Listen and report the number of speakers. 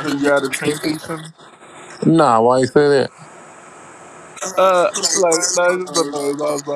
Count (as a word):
two